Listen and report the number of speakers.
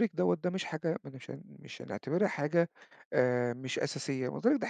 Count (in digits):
1